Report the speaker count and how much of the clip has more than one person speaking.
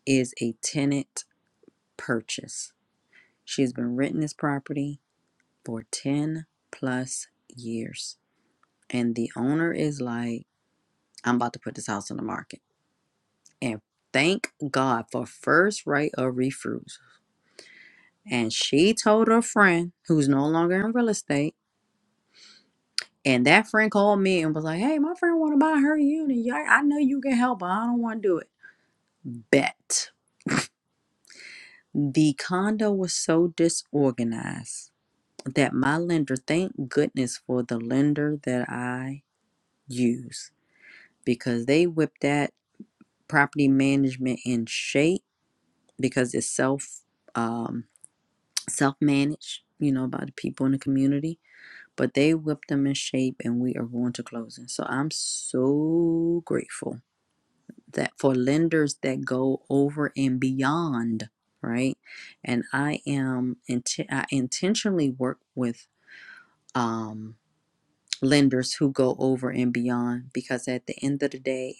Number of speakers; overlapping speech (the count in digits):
1, no overlap